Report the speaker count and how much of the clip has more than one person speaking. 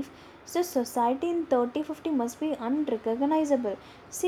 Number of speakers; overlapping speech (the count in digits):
1, no overlap